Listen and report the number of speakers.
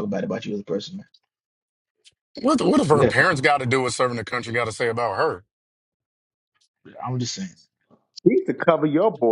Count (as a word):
three